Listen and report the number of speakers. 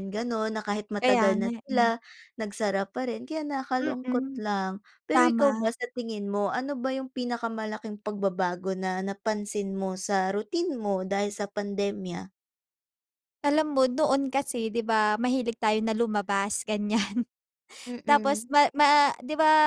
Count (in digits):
2